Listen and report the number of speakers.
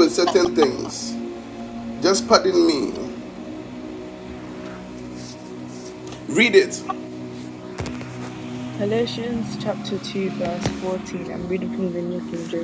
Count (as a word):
two